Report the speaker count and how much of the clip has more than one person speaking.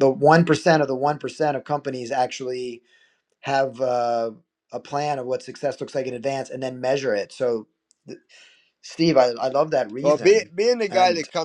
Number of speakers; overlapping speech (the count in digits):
2, about 6%